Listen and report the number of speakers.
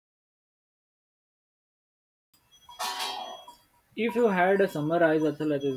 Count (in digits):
1